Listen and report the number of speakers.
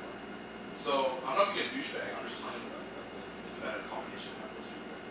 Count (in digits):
1